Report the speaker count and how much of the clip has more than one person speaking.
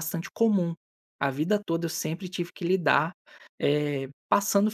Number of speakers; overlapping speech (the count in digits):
1, no overlap